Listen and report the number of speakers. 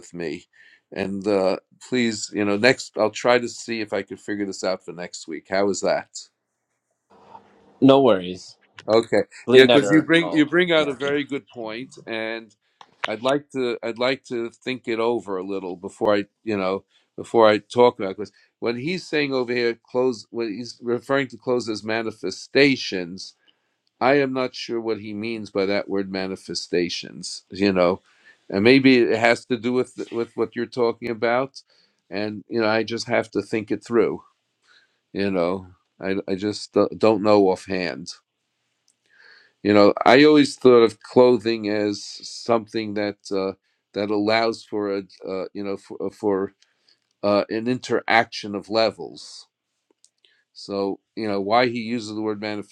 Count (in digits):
2